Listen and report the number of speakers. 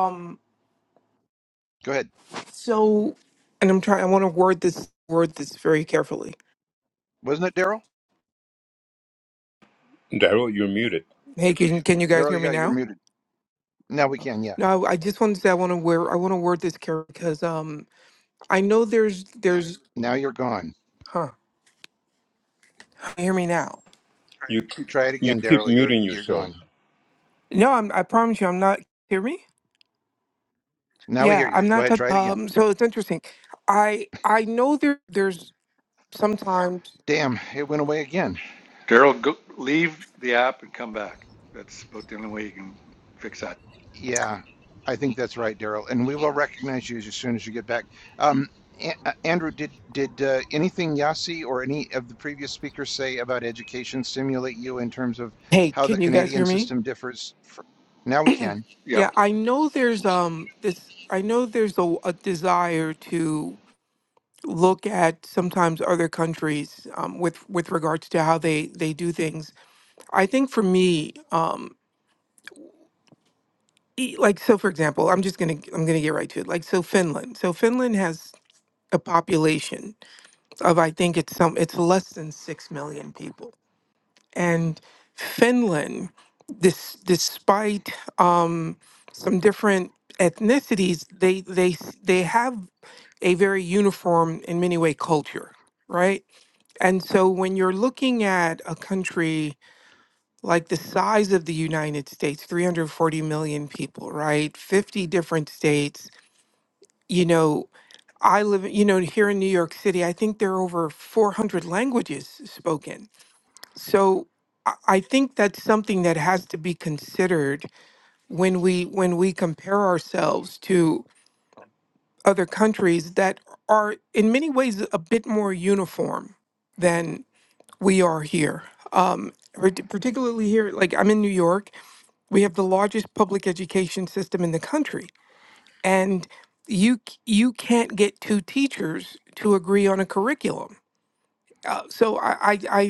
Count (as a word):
four